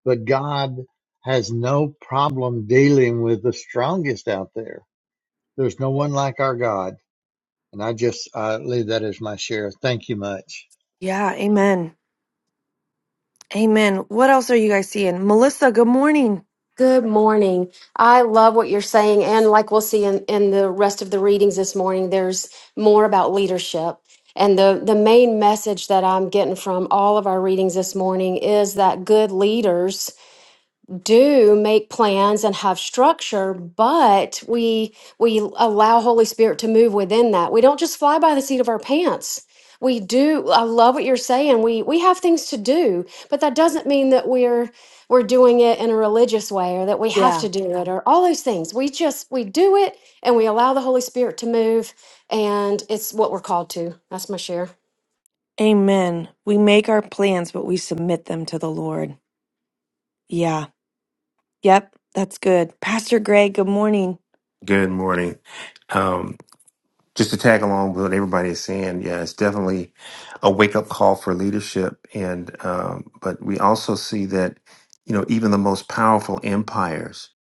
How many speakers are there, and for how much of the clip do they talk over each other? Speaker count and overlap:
4, under 1%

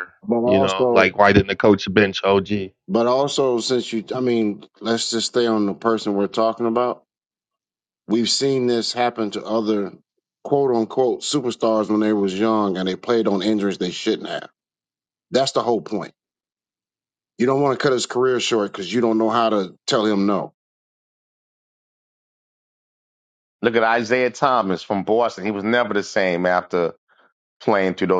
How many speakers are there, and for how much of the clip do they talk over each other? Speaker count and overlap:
3, about 2%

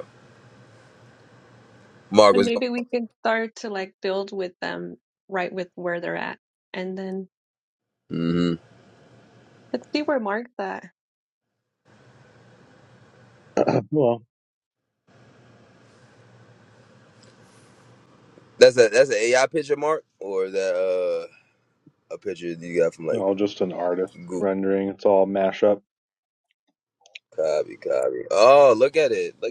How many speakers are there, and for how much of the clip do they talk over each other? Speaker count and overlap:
3, about 1%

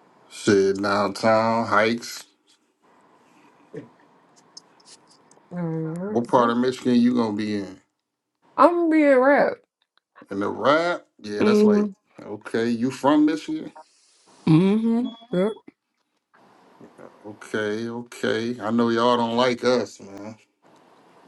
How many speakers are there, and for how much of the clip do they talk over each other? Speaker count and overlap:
2, about 2%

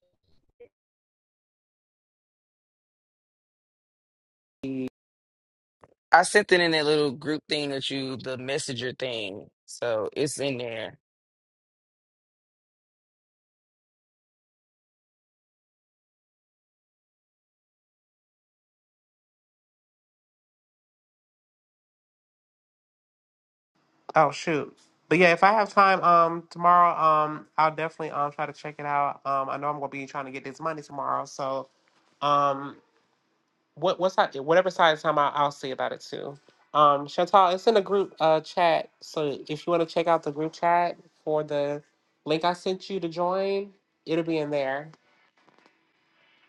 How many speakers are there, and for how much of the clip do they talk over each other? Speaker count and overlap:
2, no overlap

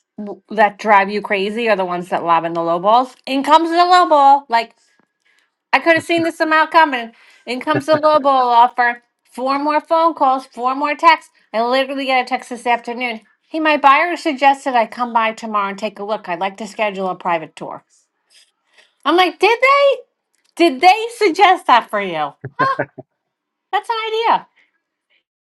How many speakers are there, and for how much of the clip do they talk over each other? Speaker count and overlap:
1, no overlap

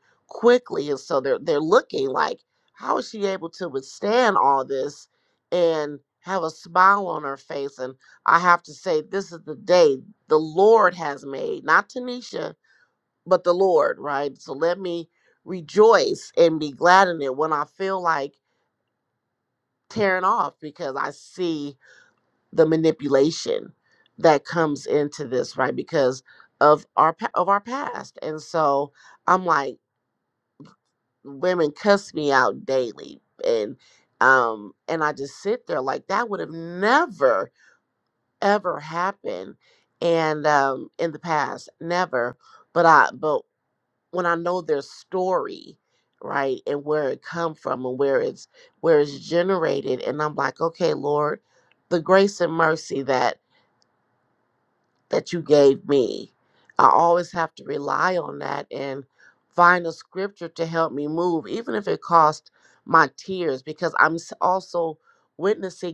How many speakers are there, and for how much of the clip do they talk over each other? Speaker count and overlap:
1, no overlap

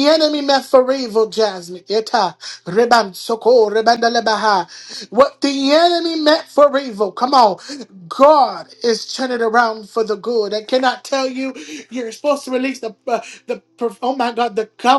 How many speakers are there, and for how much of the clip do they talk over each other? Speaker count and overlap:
1, no overlap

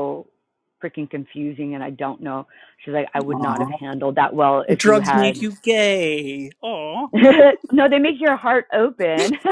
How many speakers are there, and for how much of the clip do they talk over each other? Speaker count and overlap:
2, about 13%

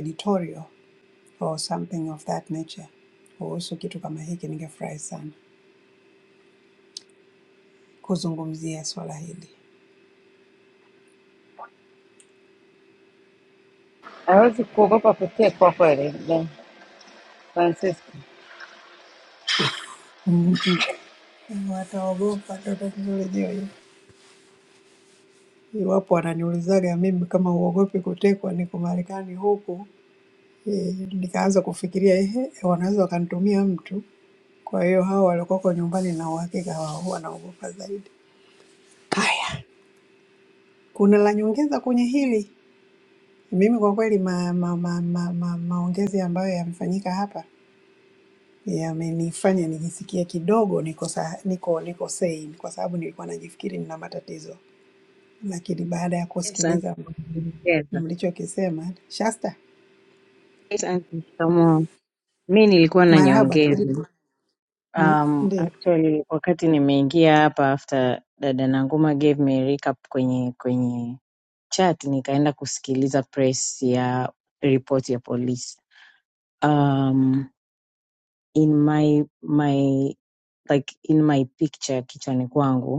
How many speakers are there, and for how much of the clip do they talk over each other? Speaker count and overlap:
3, about 3%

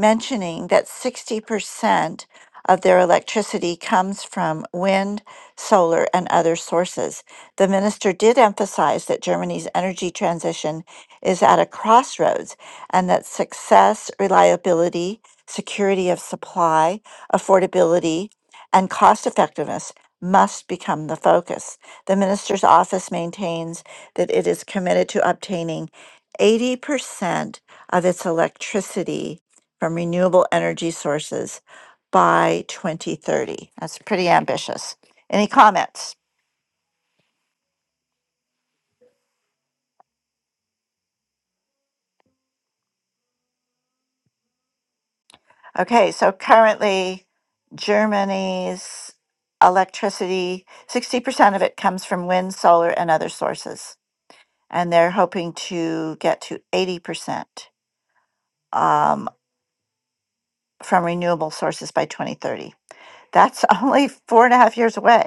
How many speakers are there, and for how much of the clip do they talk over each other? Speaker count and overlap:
1, no overlap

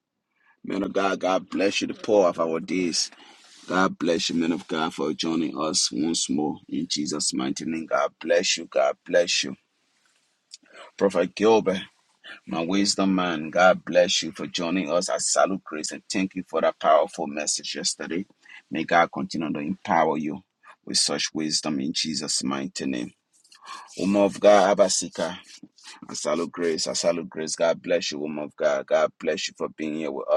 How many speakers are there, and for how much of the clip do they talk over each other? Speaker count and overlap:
1, no overlap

